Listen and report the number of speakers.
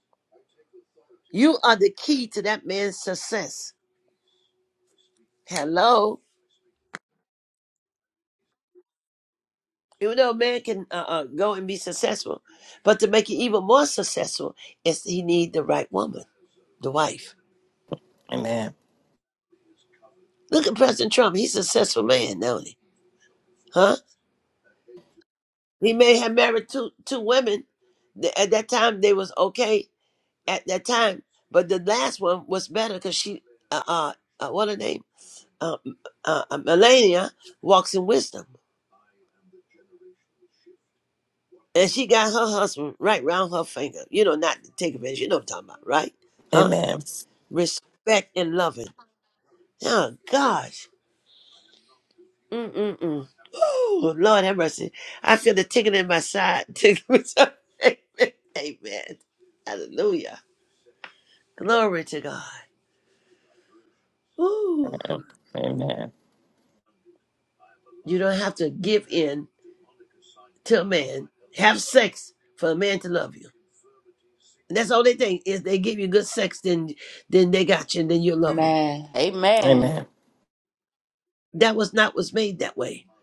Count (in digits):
3